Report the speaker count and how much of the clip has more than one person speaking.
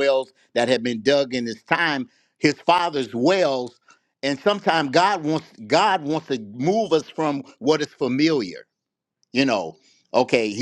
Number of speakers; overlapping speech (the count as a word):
one, no overlap